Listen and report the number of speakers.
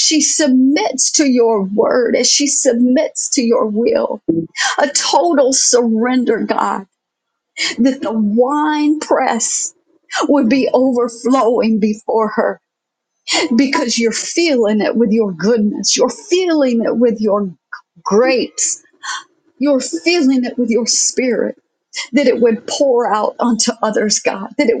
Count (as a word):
one